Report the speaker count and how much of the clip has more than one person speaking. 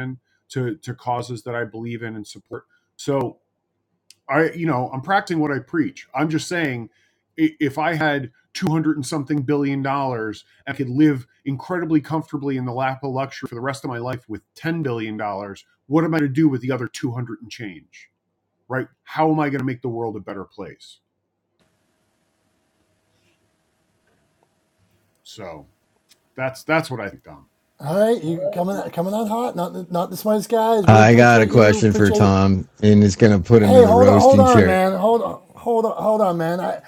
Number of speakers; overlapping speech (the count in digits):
3, about 7%